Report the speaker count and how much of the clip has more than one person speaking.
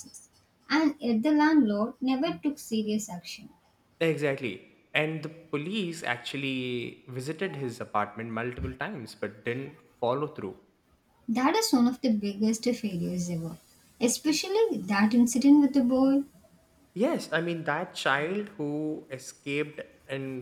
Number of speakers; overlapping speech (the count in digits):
2, no overlap